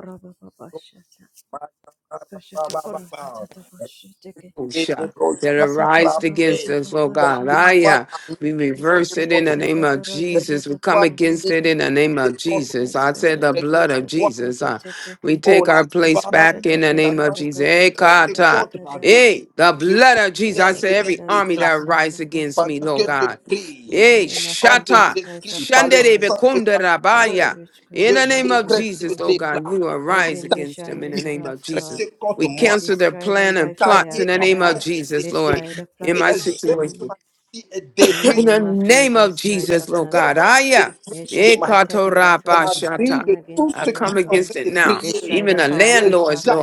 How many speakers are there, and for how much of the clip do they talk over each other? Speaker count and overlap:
3, about 72%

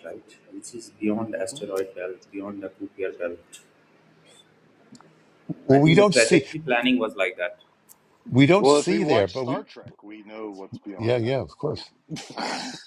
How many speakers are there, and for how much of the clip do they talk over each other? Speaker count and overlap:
3, about 22%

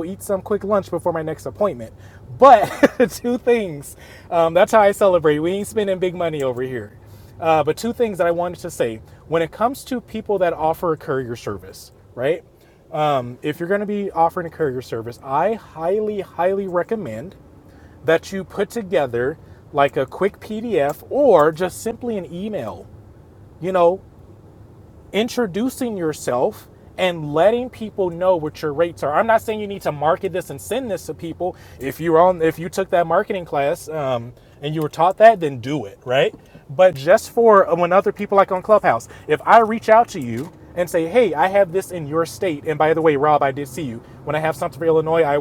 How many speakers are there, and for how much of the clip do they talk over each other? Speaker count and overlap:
1, no overlap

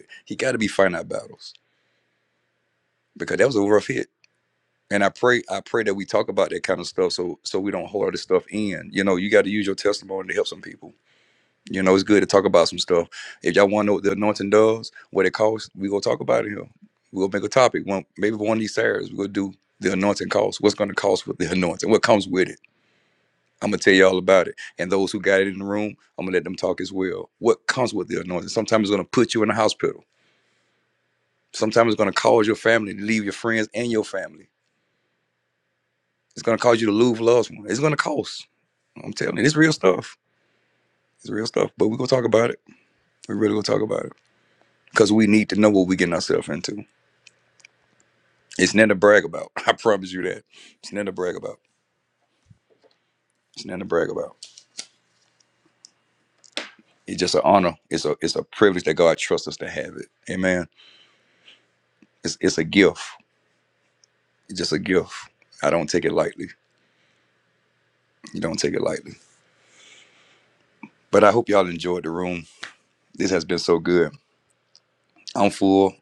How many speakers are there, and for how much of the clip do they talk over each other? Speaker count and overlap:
1, no overlap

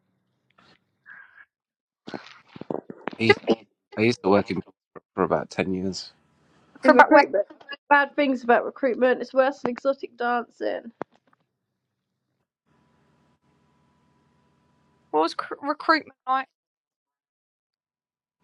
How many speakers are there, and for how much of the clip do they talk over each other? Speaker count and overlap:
3, about 2%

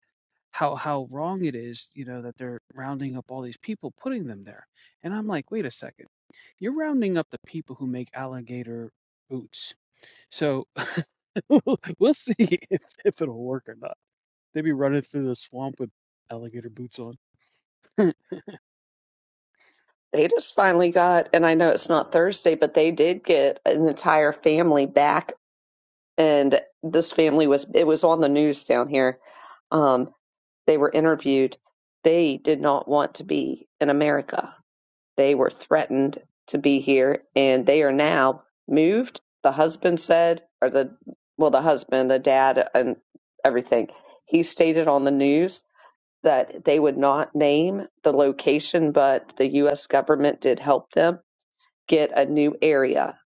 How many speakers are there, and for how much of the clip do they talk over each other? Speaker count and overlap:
2, no overlap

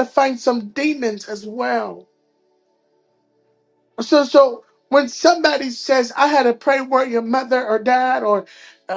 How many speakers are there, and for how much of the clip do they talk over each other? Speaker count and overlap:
1, no overlap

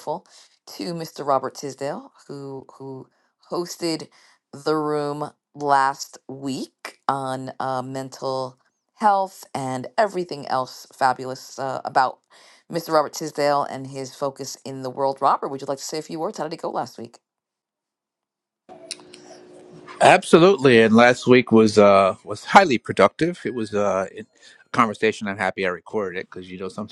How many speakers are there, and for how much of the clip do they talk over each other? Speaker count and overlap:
2, no overlap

